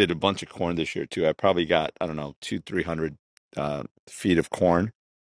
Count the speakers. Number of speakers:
one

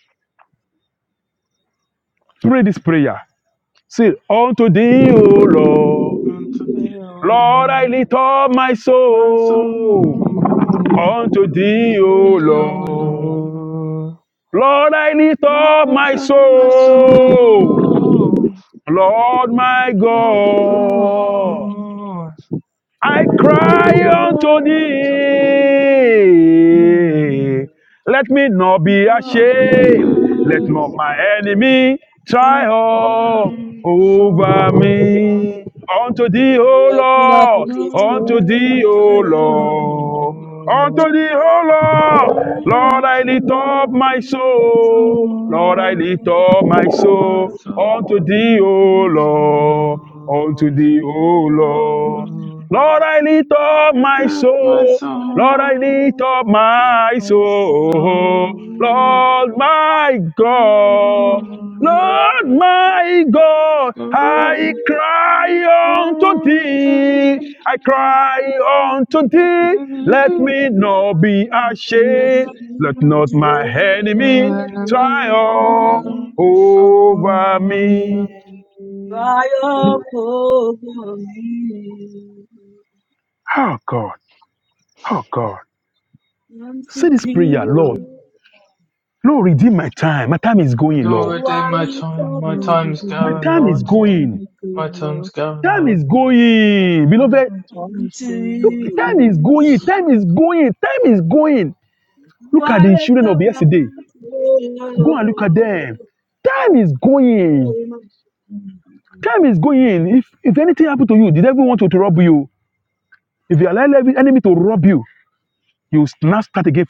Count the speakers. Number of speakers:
four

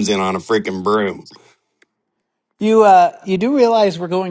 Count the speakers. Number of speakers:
two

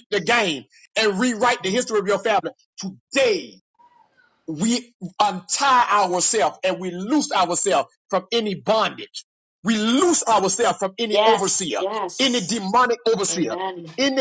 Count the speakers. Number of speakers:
two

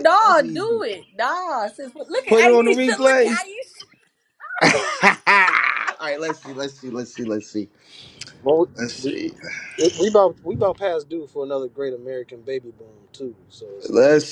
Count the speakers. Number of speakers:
three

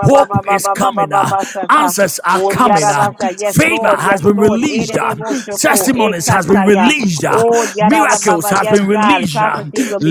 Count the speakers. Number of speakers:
two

